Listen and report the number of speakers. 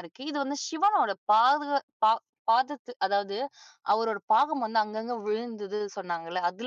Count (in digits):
1